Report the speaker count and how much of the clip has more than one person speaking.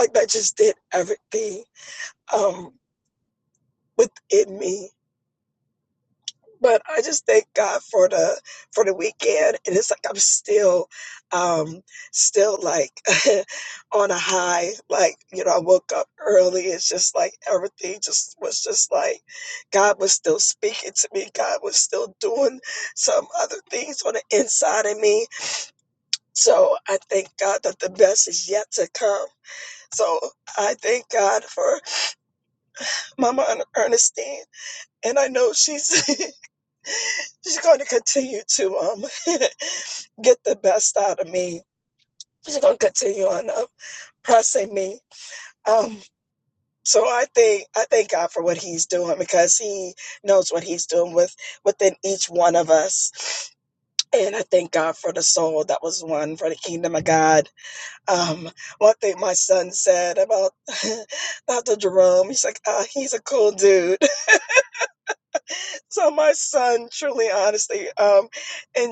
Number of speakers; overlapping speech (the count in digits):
1, no overlap